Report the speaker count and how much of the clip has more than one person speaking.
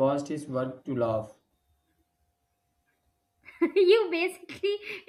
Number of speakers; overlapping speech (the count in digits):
2, no overlap